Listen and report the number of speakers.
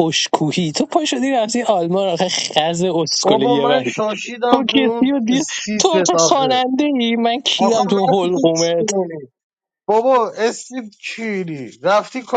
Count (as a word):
two